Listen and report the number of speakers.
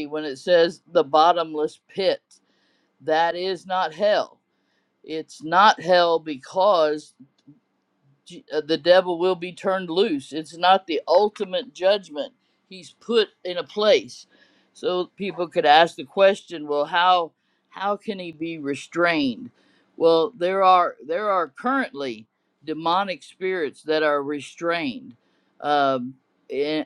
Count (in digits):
1